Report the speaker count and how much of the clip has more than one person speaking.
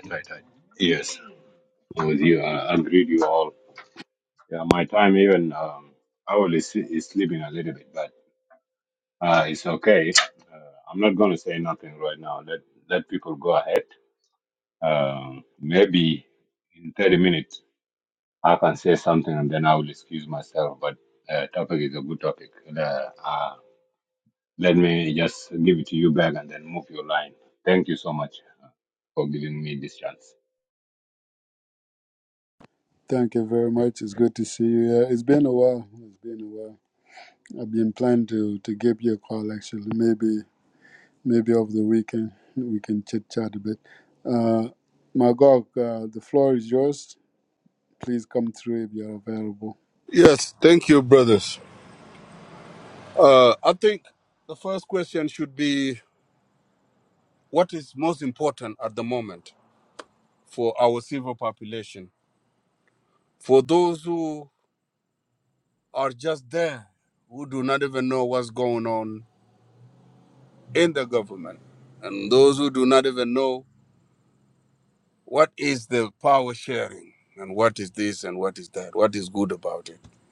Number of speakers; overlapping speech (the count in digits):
3, no overlap